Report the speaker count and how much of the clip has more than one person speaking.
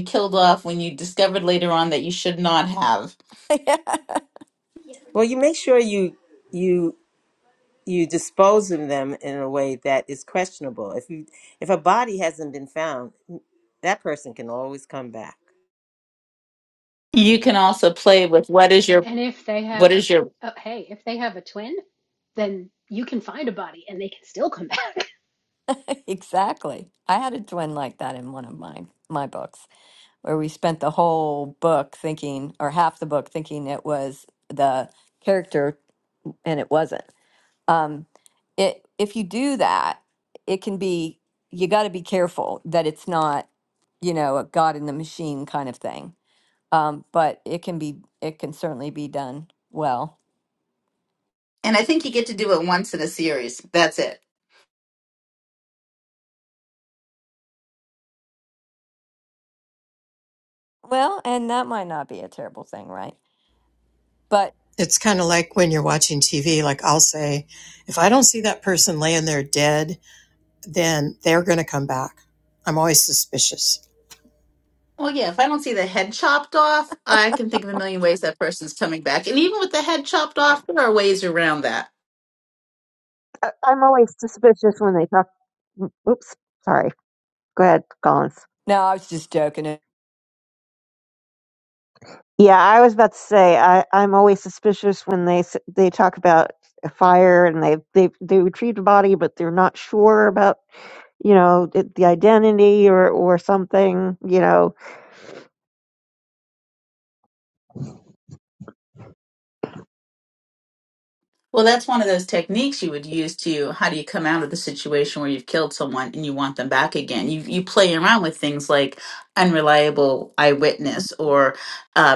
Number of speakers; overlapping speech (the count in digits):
6, under 1%